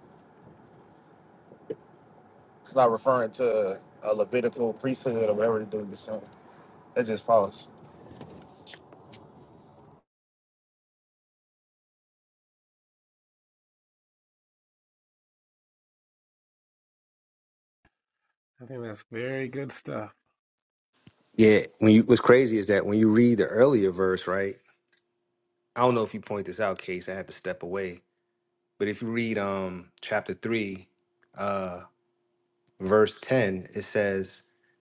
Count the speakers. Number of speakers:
three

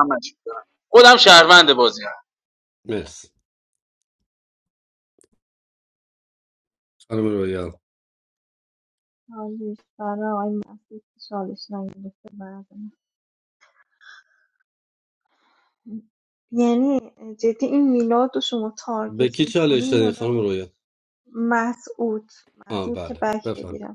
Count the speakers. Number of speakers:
three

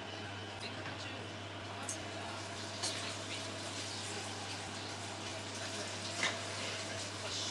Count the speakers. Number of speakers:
zero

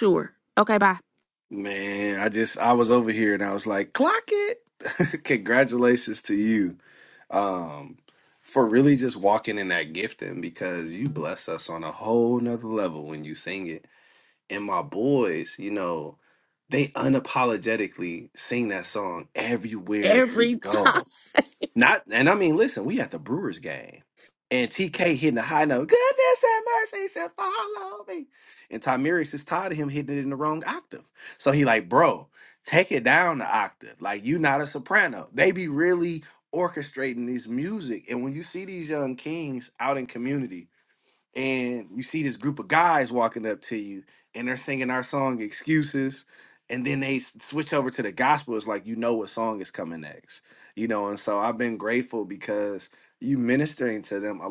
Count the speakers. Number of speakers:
two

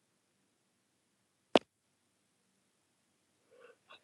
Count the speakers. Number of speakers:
zero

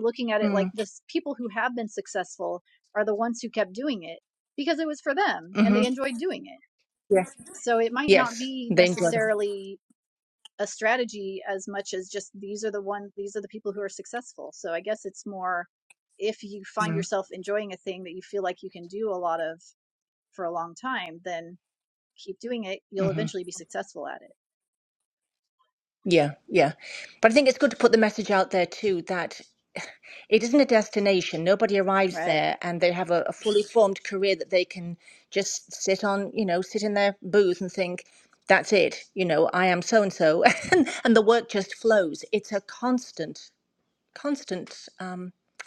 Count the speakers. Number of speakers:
two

